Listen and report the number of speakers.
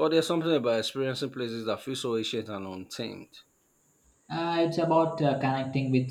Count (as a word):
two